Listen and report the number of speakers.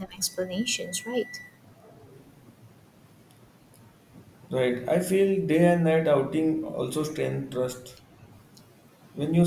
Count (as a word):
two